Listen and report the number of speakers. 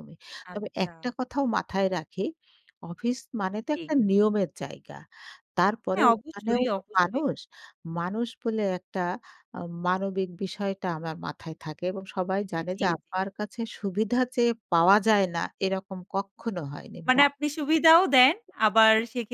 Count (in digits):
2